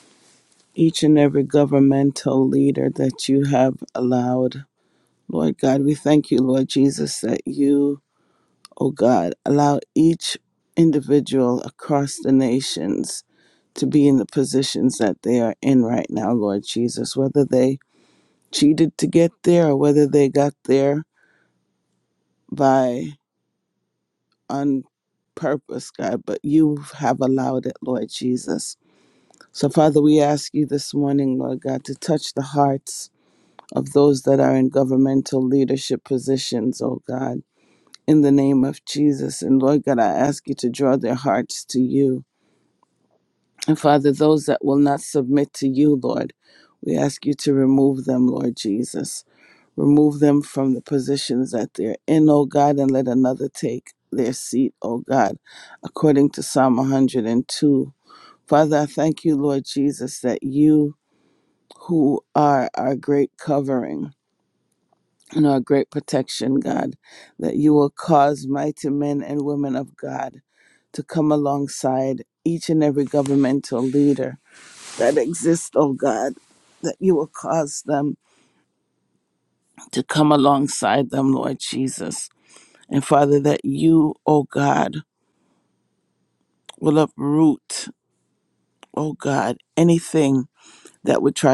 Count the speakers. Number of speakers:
1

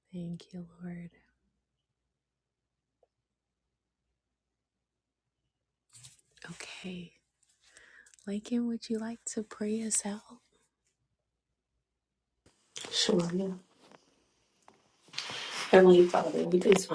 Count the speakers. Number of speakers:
2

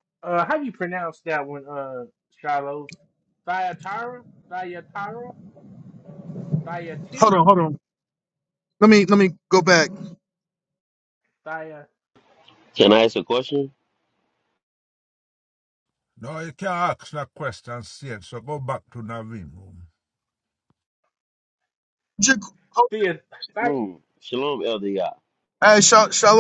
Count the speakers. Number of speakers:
4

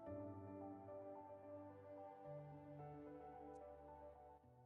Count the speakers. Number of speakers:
0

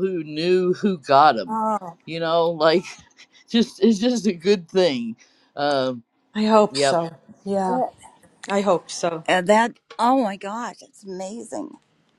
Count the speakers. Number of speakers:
3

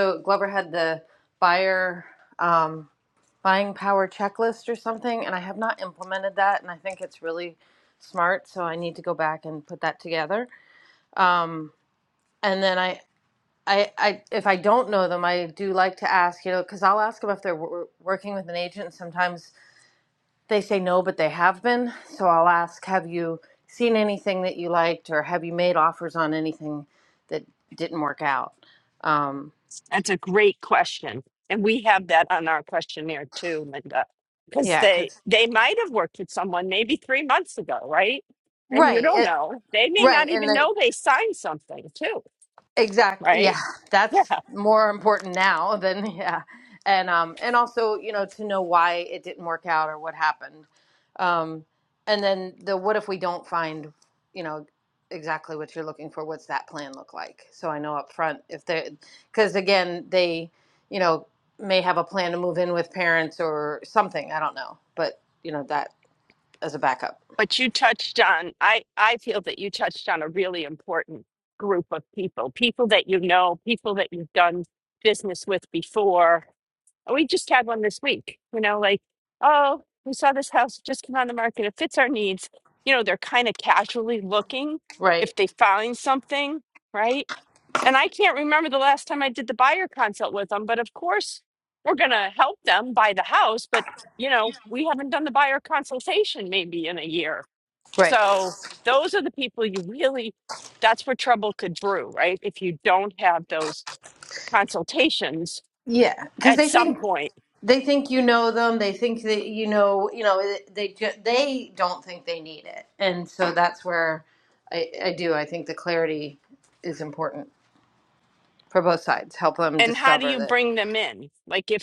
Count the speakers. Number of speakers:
2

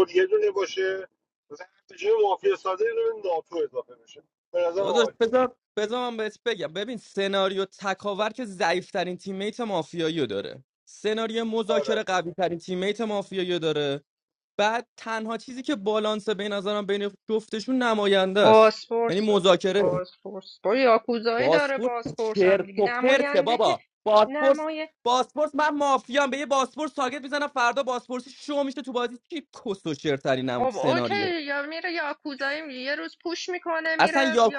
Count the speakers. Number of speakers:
3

